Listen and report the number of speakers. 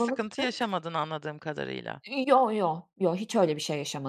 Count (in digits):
2